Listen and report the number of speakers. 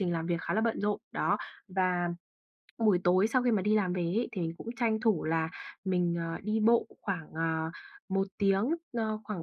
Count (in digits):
1